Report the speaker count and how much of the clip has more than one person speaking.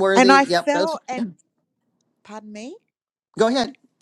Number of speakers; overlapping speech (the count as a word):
two, about 27%